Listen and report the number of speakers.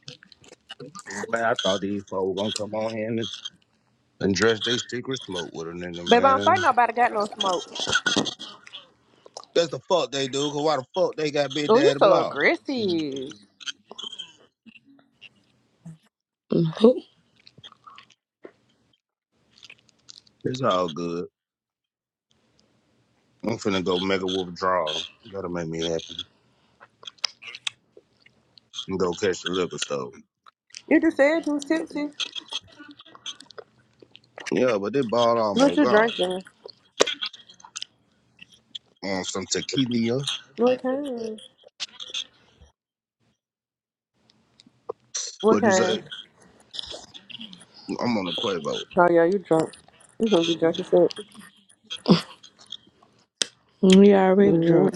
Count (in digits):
3